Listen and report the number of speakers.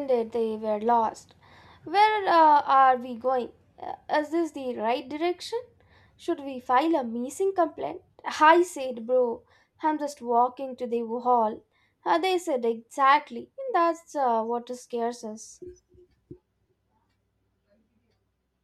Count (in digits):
1